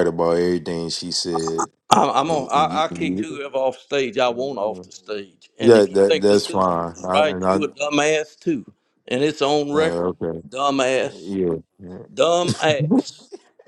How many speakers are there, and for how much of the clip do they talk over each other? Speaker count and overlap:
2, about 27%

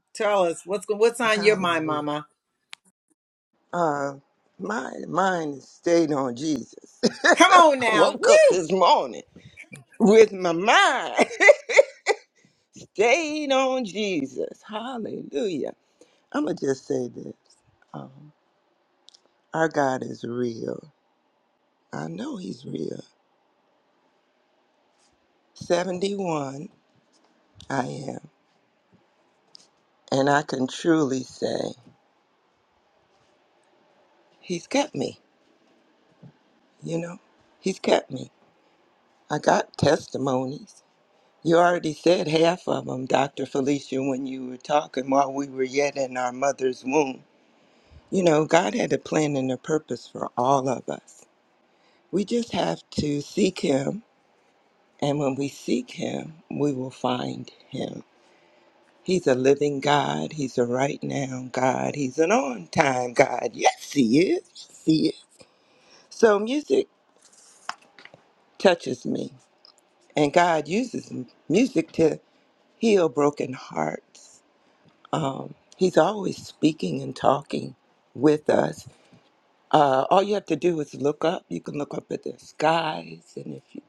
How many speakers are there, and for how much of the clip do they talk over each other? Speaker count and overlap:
2, about 2%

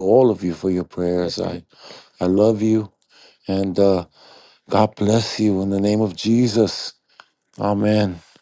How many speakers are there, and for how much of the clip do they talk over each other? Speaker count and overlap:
1, no overlap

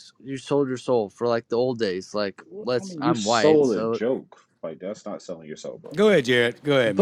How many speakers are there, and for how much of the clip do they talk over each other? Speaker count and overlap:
3, about 20%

